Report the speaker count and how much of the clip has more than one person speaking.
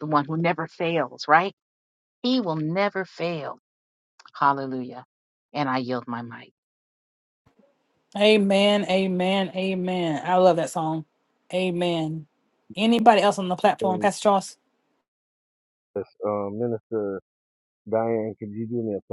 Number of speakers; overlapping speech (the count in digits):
3, about 1%